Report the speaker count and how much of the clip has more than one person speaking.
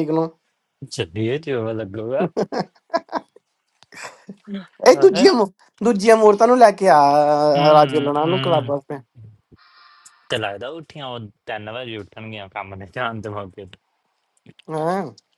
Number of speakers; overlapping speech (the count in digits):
2, about 9%